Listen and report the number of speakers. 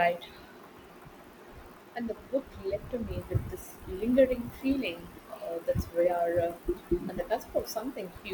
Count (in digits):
1